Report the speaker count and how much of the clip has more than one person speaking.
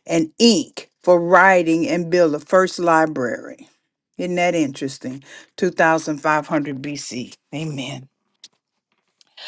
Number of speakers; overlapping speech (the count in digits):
1, no overlap